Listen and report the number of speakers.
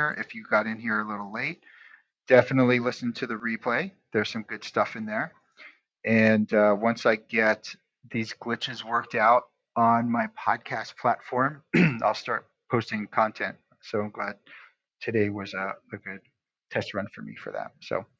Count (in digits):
1